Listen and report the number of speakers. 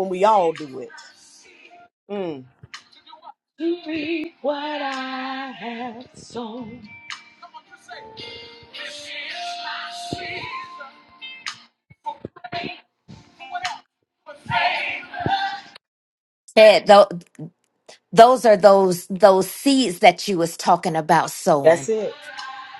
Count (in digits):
2